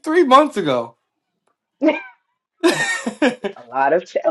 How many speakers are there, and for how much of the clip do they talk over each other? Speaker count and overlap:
2, no overlap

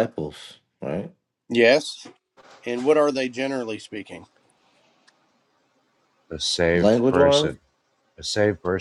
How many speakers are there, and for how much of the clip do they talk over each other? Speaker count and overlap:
3, about 9%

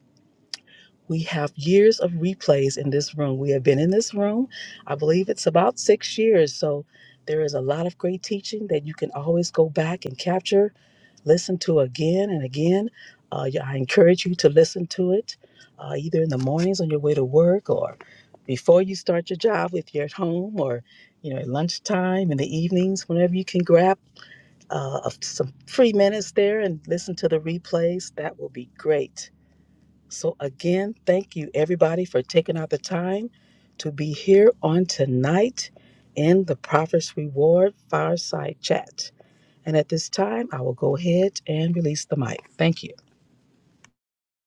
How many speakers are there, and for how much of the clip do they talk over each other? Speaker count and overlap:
1, no overlap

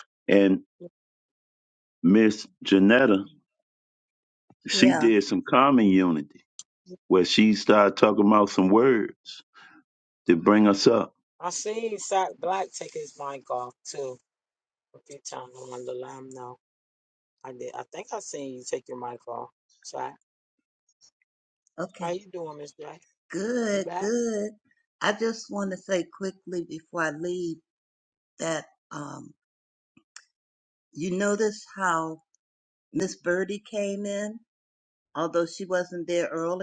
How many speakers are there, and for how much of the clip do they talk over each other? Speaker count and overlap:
3, about 2%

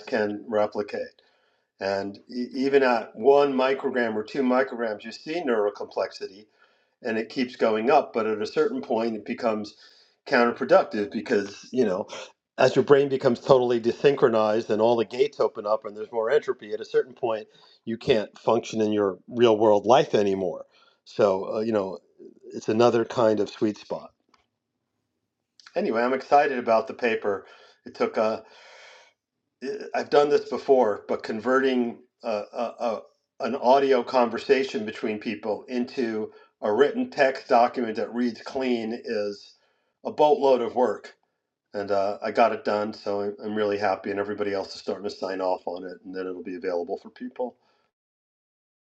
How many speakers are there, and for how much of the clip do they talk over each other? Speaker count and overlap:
1, no overlap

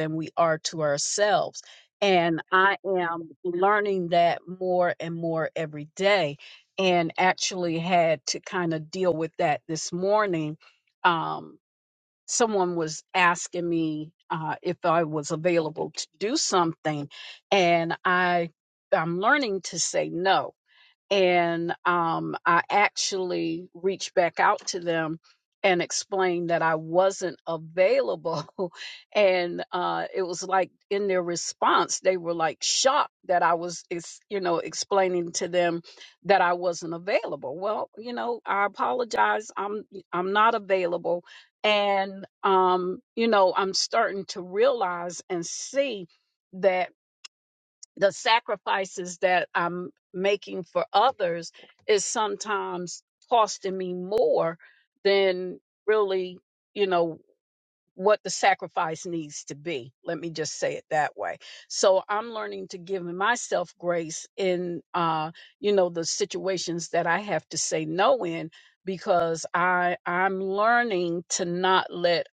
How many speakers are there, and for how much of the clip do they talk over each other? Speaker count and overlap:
1, no overlap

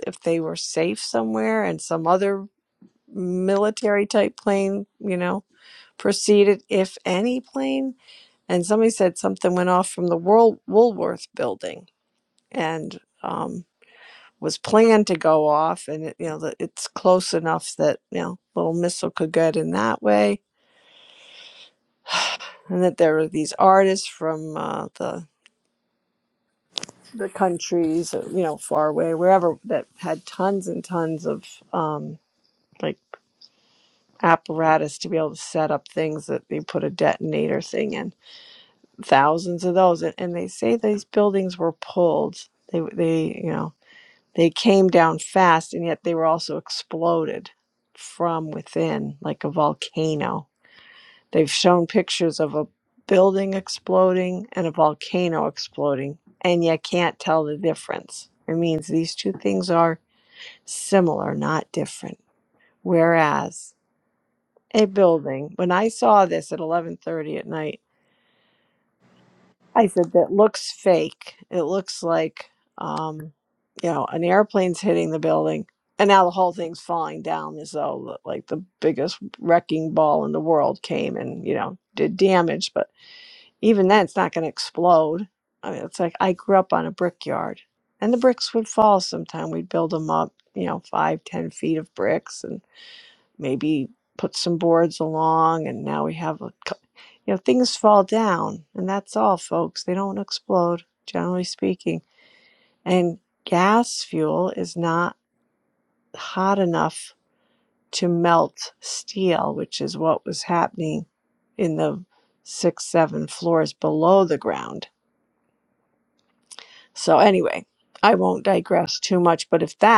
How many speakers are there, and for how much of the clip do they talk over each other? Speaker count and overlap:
1, no overlap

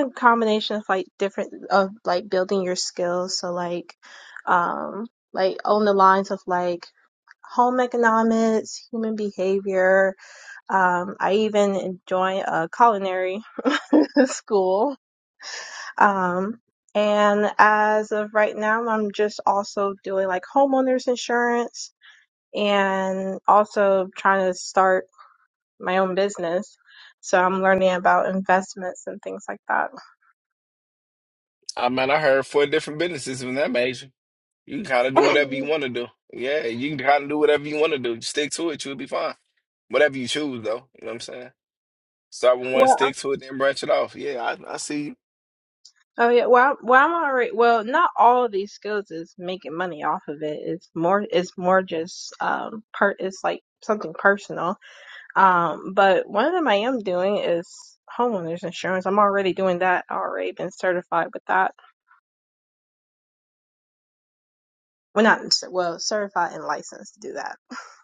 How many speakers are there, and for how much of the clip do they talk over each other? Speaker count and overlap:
2, about 1%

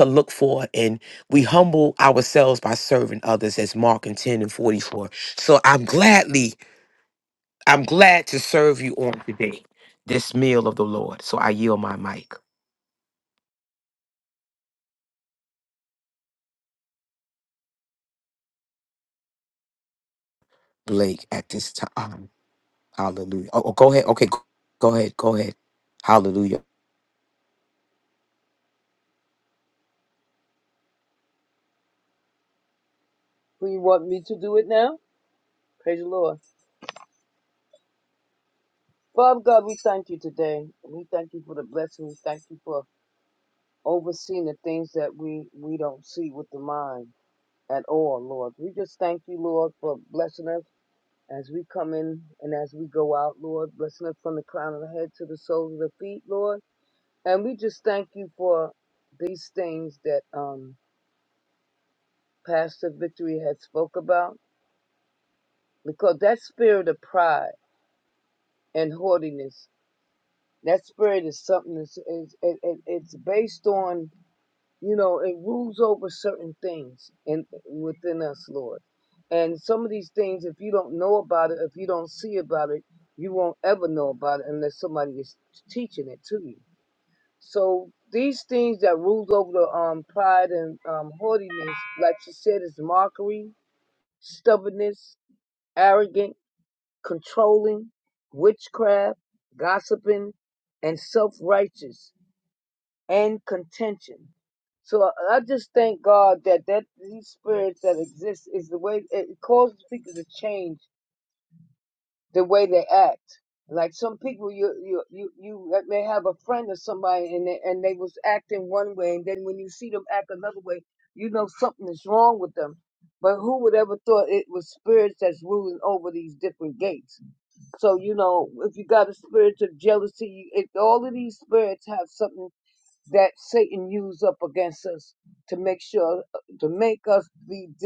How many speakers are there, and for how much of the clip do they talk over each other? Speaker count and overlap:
2, no overlap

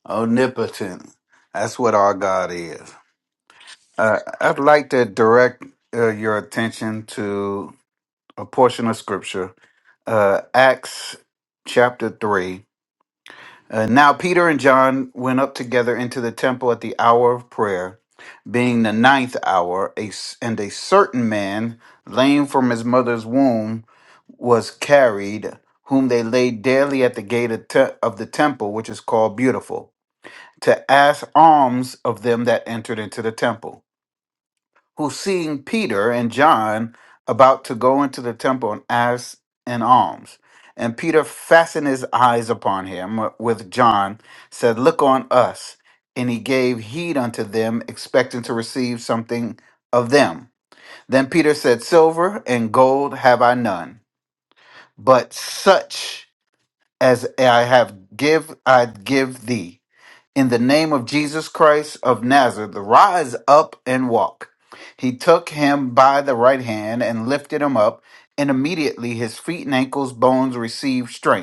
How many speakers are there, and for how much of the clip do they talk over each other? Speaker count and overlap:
1, no overlap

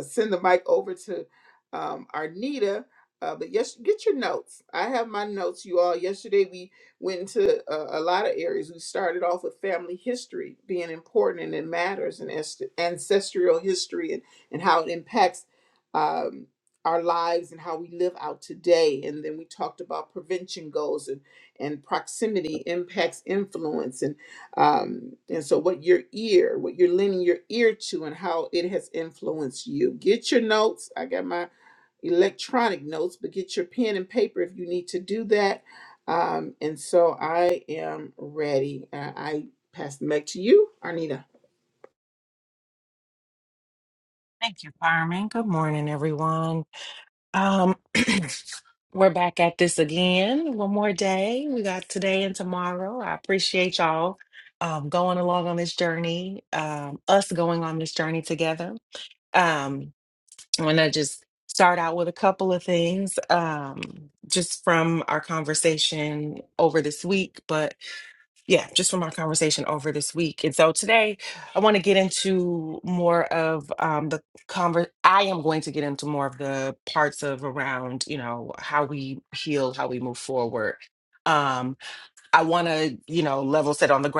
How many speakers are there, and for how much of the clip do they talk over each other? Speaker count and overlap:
2, no overlap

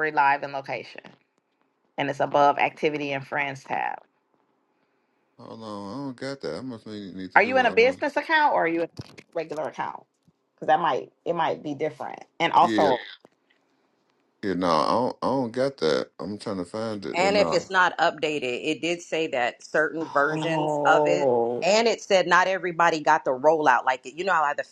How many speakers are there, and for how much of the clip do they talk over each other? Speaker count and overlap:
3, about 10%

